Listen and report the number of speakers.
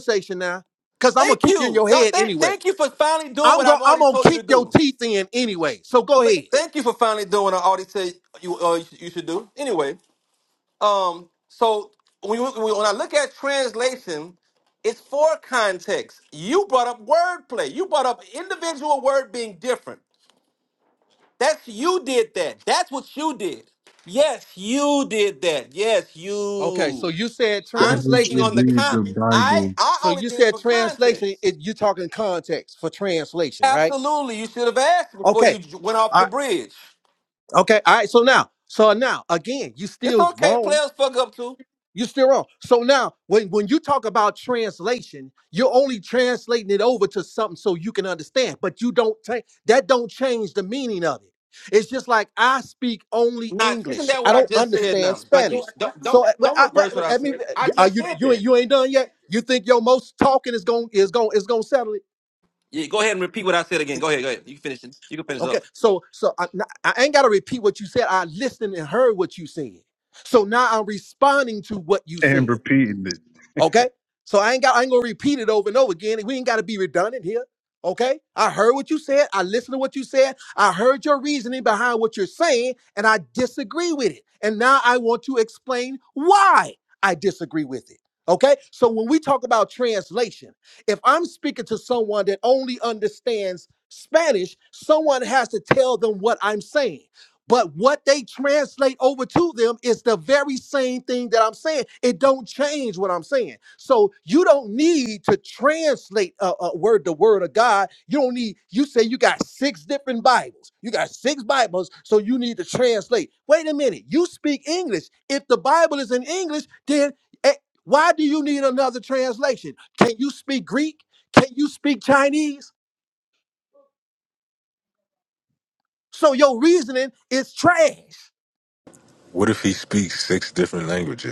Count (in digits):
4